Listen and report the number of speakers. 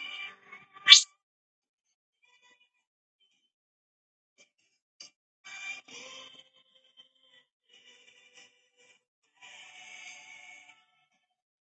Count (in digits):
0